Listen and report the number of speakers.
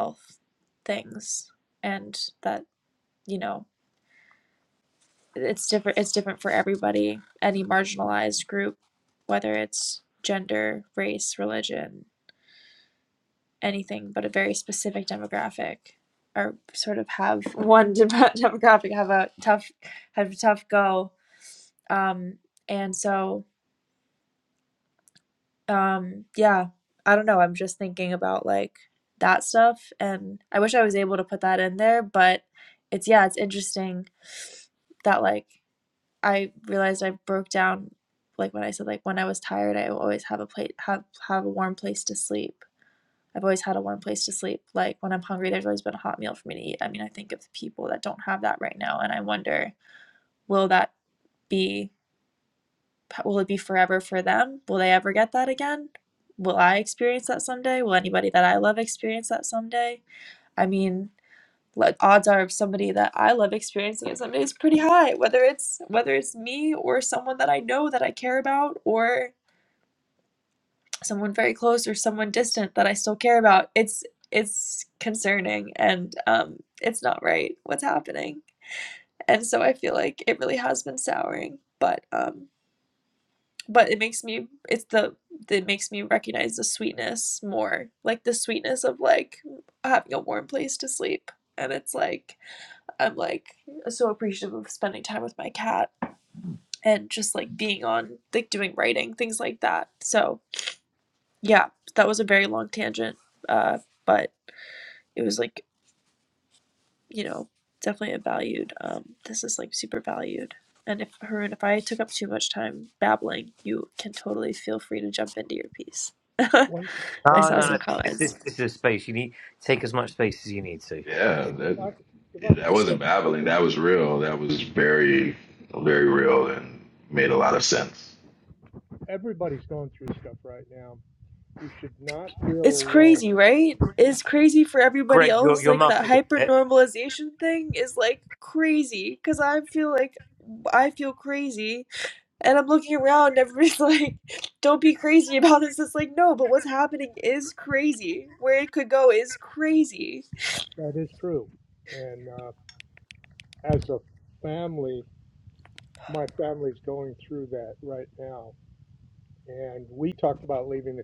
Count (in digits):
4